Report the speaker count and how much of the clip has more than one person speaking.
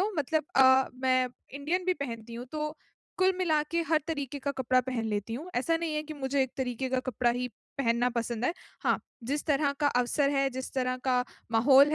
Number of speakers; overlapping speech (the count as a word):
one, no overlap